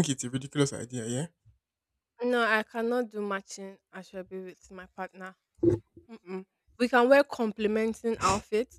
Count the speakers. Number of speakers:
2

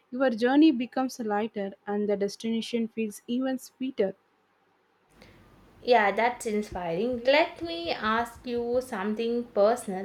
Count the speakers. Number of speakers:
2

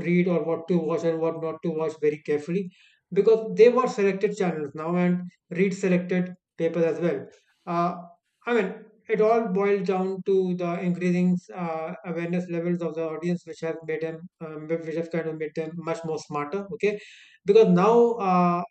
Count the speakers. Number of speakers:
1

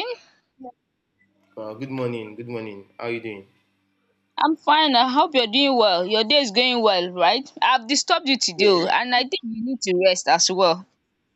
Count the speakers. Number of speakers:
2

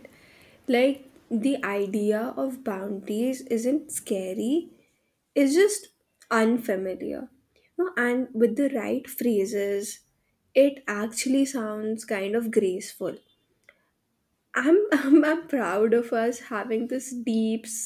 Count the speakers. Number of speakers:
1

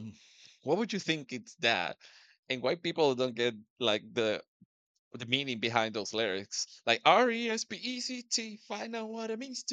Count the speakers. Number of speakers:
1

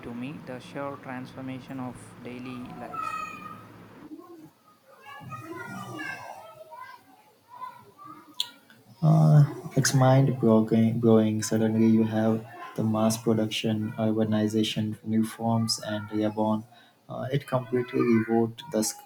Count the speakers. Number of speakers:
2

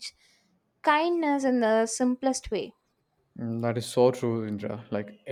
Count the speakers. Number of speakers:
2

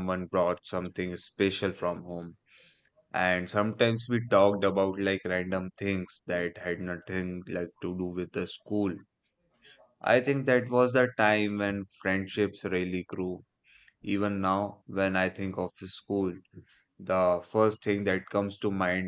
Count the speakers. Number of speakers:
1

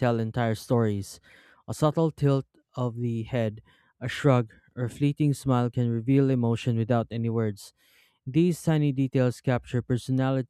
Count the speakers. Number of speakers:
1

